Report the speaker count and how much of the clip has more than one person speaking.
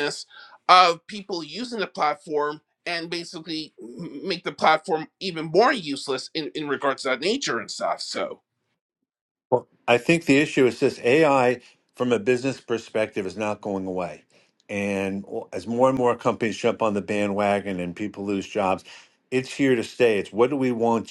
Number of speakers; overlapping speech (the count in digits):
2, no overlap